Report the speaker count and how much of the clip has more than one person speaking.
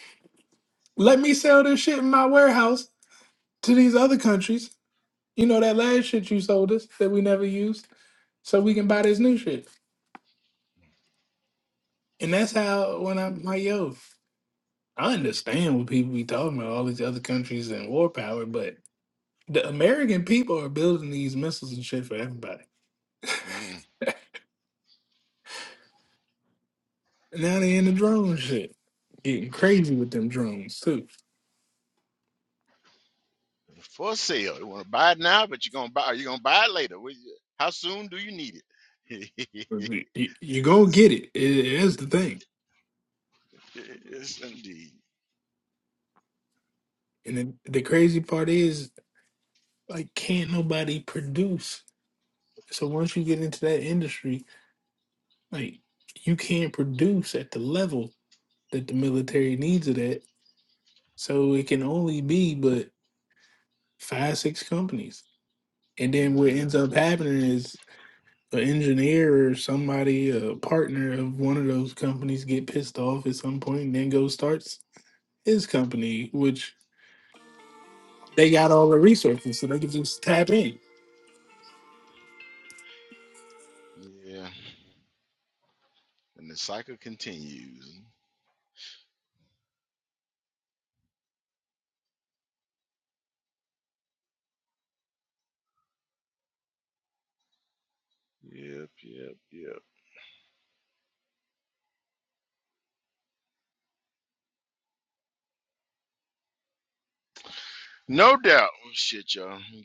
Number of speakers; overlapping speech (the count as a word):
two, about 1%